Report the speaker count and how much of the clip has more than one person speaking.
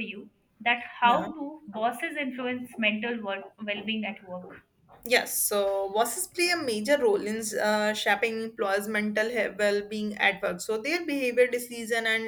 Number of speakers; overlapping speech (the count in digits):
2, about 2%